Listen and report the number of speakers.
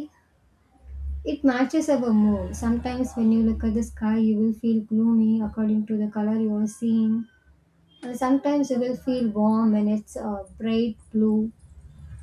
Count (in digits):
1